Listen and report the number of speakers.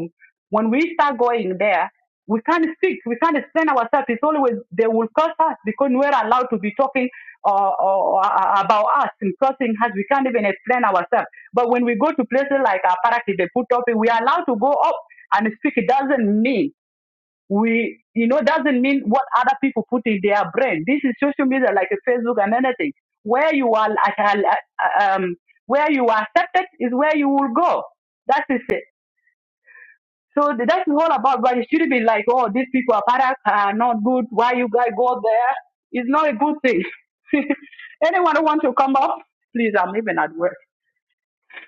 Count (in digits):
1